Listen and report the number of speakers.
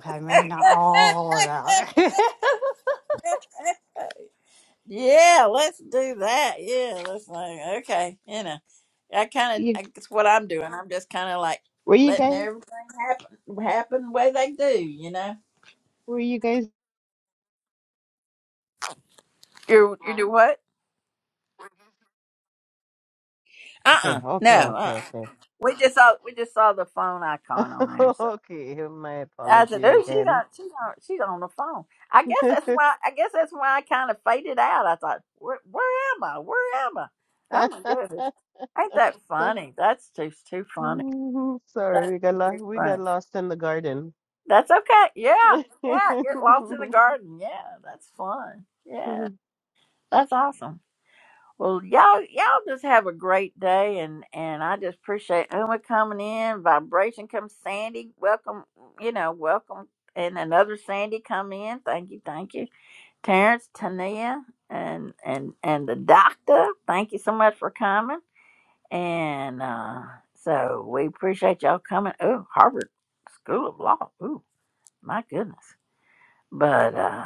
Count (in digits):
3